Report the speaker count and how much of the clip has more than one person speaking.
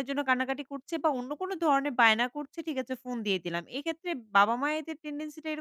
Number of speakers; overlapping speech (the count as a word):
one, no overlap